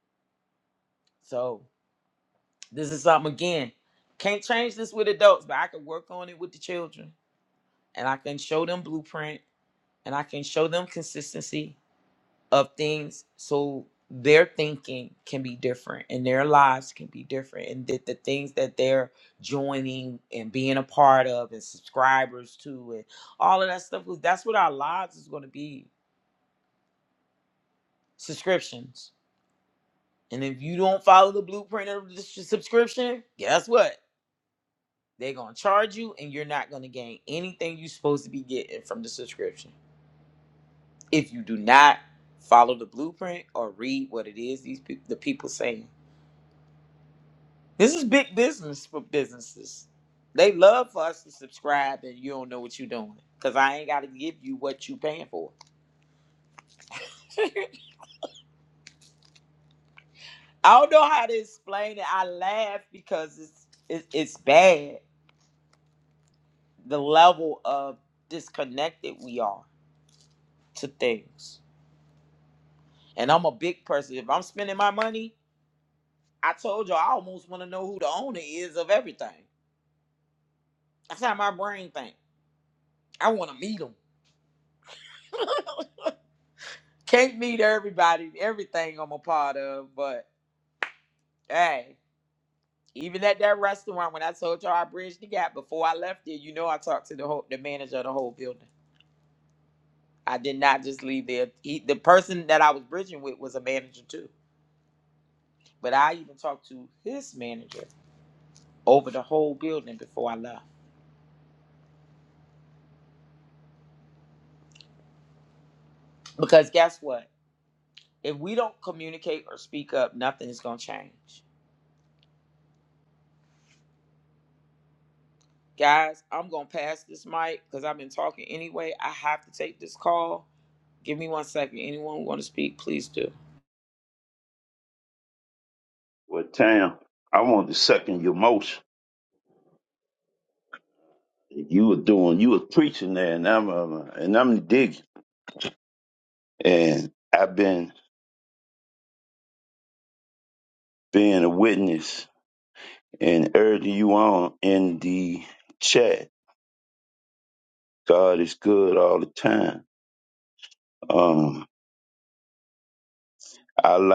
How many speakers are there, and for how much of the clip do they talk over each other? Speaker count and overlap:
two, no overlap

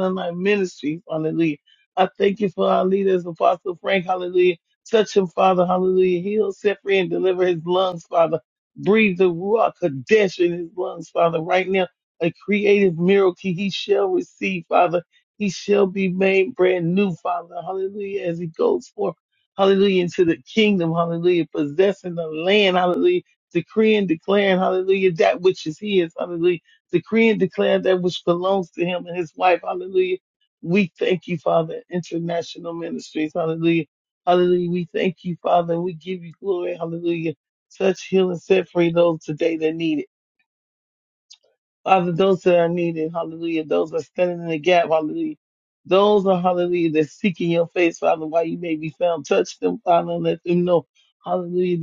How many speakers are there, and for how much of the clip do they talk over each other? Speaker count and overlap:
one, no overlap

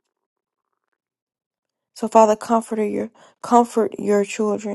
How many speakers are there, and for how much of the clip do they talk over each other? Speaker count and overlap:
one, no overlap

